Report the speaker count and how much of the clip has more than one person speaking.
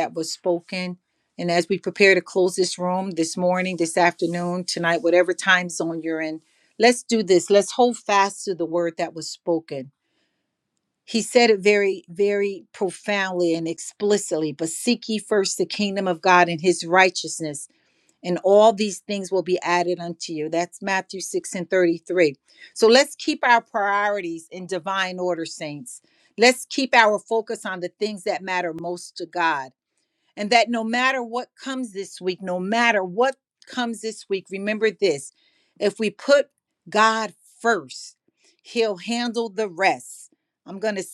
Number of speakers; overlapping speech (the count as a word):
one, no overlap